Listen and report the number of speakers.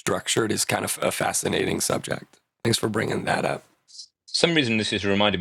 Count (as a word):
two